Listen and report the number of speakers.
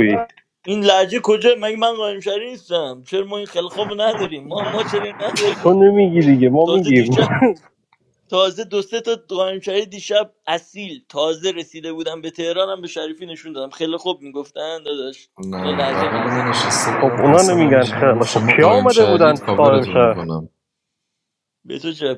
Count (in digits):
3